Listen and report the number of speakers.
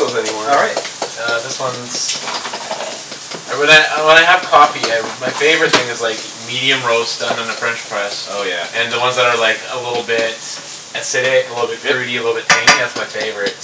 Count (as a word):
two